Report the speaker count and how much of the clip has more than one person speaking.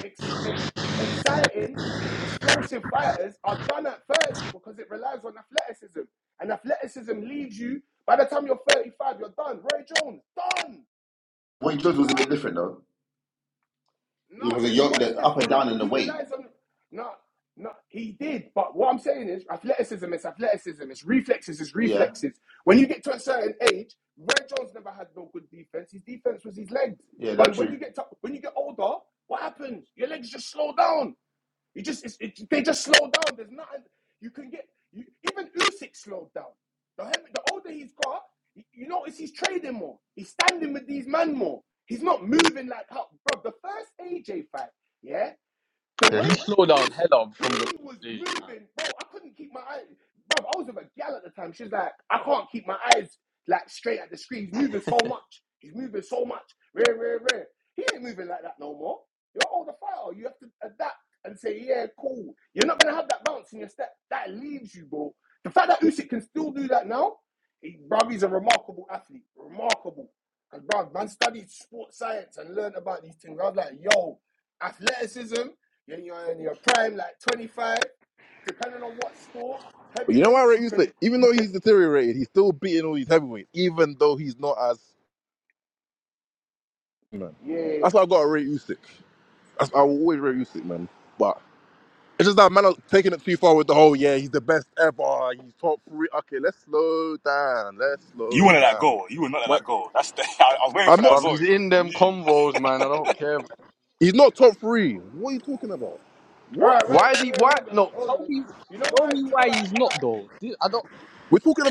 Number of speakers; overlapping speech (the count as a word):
five, about 10%